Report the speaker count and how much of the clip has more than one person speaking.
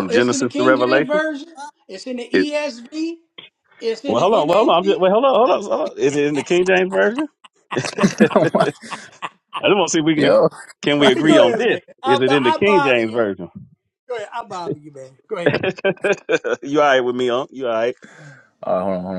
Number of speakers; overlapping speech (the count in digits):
3, about 24%